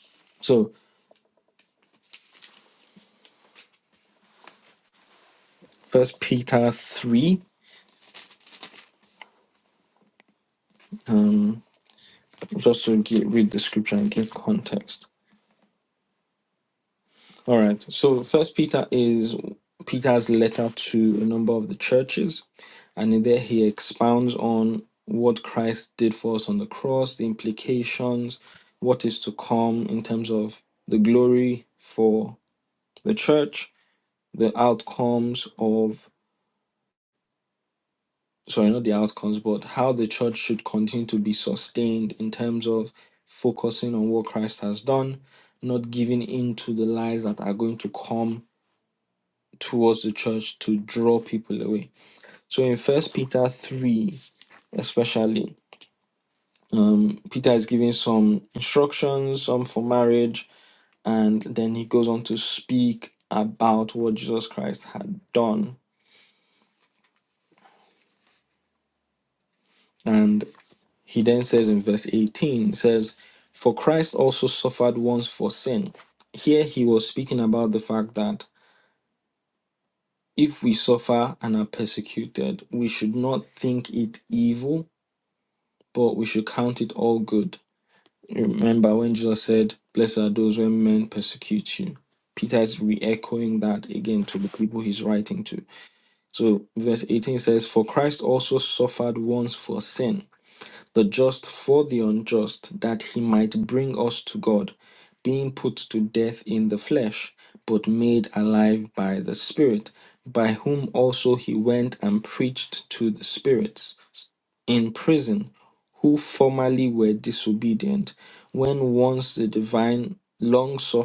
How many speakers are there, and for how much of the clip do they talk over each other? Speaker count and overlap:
1, no overlap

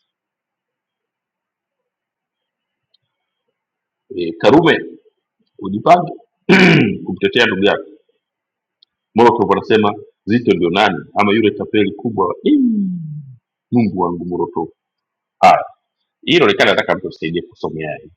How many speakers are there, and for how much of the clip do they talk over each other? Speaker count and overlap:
1, no overlap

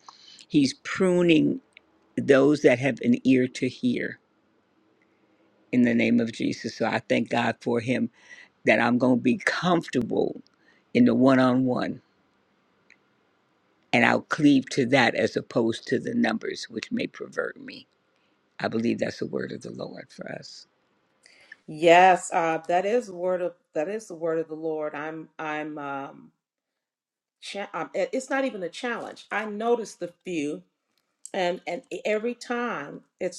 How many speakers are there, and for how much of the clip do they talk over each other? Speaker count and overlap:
2, no overlap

